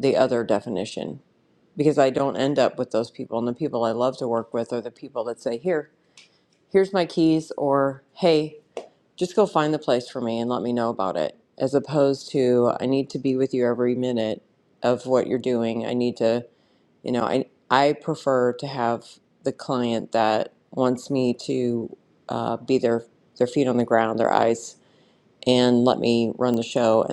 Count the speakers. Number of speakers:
1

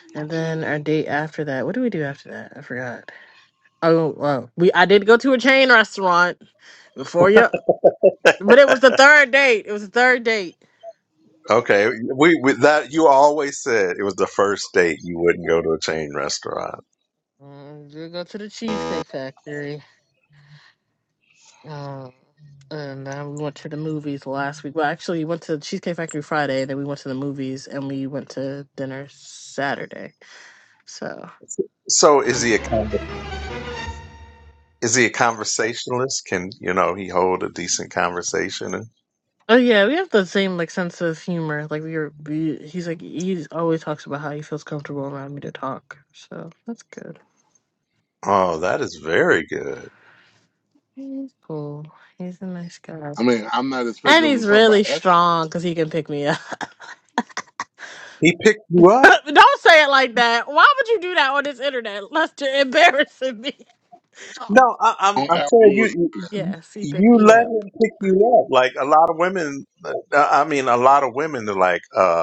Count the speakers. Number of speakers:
3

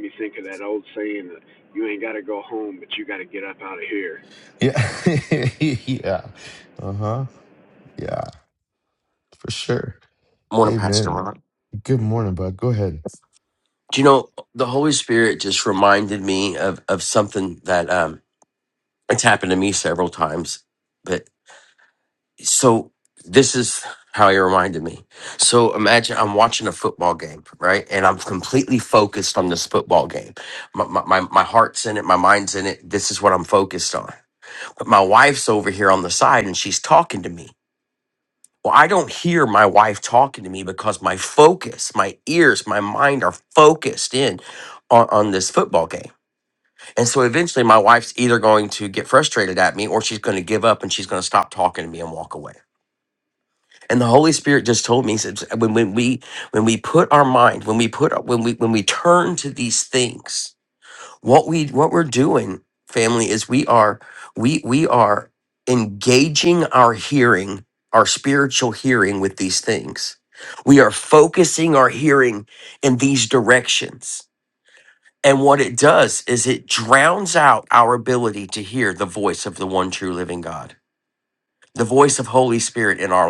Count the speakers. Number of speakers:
3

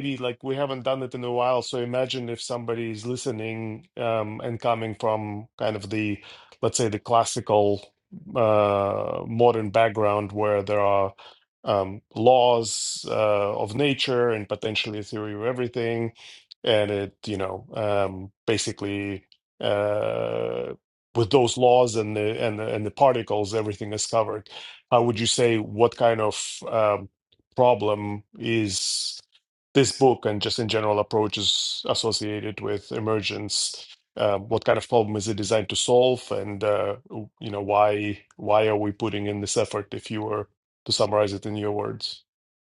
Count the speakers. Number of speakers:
1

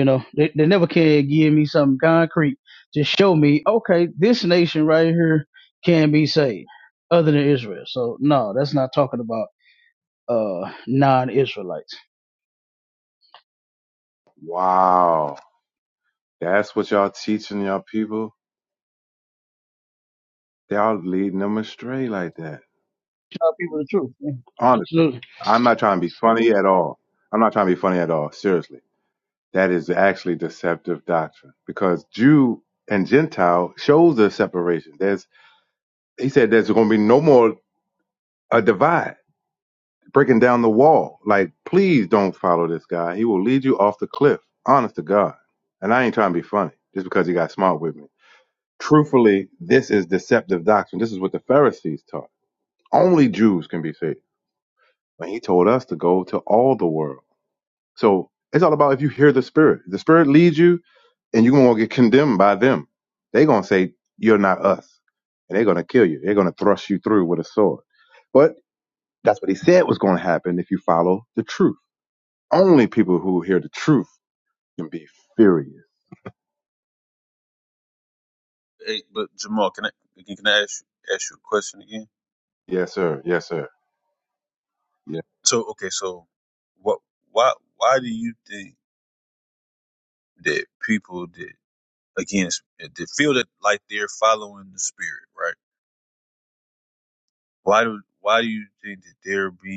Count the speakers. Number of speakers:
3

